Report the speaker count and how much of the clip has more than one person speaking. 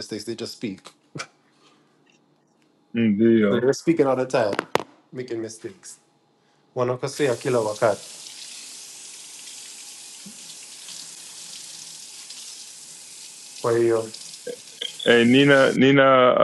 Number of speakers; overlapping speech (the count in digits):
2, about 1%